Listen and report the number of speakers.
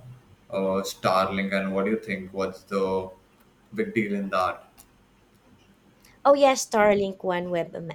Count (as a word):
two